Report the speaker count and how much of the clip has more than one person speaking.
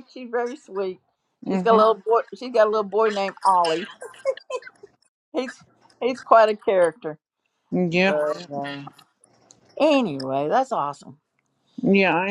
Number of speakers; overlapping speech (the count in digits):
2, about 4%